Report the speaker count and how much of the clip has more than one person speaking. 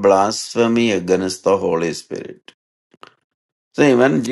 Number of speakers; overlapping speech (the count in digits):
1, no overlap